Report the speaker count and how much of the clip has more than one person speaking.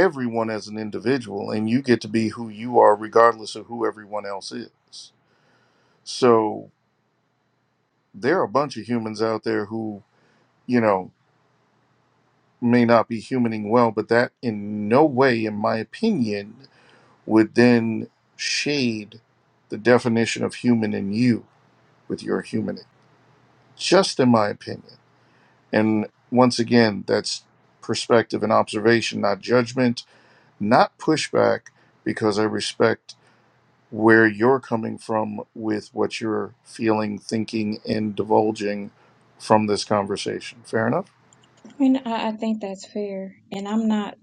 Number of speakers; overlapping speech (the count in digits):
2, no overlap